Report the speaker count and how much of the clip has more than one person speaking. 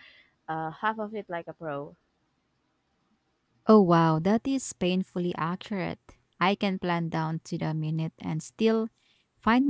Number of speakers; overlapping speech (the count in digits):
2, no overlap